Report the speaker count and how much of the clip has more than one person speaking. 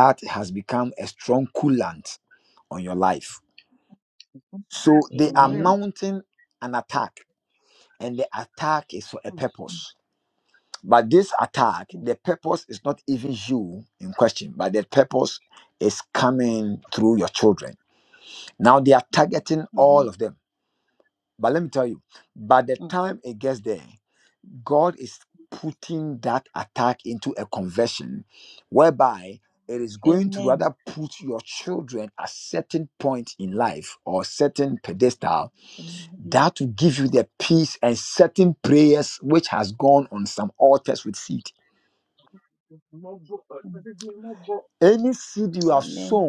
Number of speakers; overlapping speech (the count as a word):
three, about 5%